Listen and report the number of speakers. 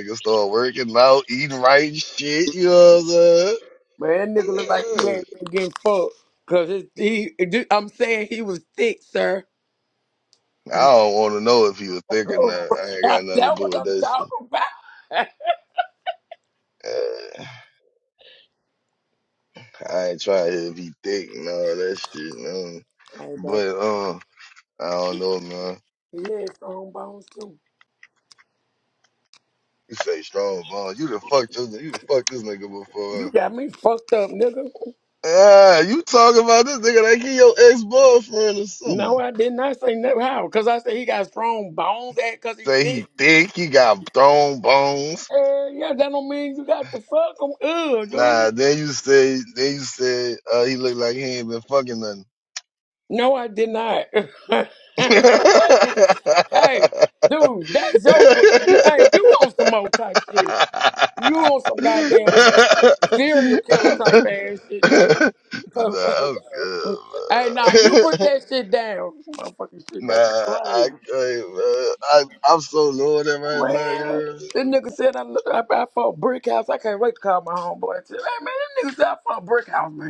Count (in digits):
2